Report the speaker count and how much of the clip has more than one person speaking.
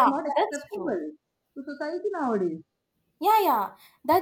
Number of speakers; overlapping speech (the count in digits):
2, about 22%